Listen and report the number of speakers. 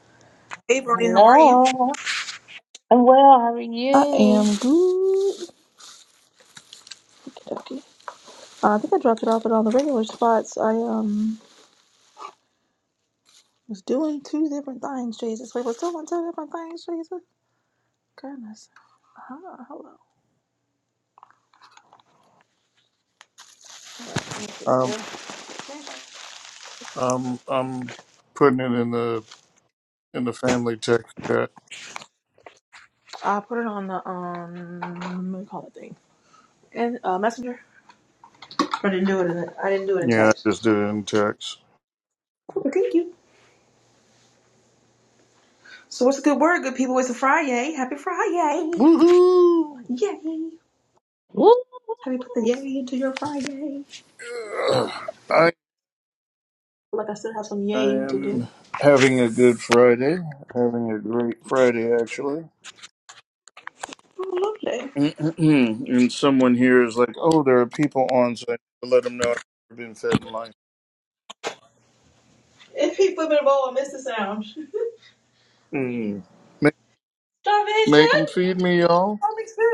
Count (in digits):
3